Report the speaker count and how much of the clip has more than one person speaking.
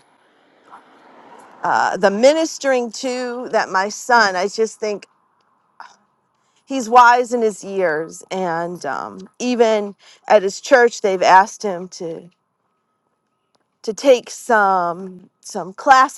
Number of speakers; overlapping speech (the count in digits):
1, no overlap